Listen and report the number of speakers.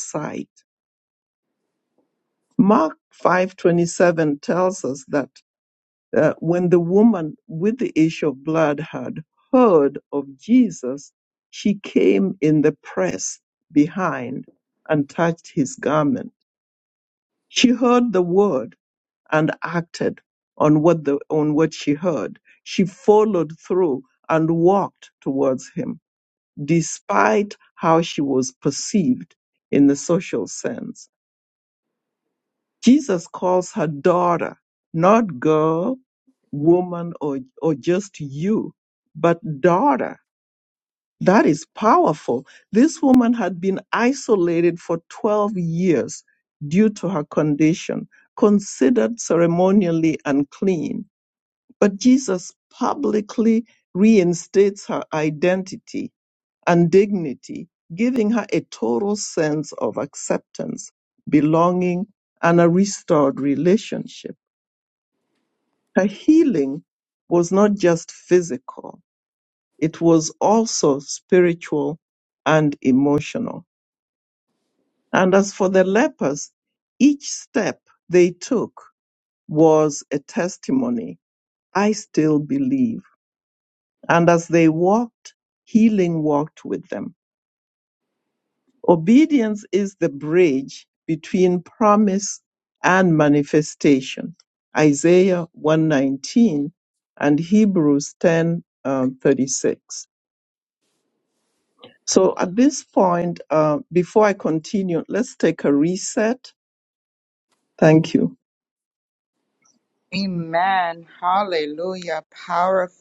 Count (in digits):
2